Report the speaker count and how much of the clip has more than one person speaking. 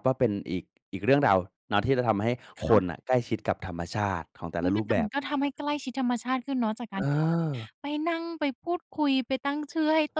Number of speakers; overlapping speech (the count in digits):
2, about 8%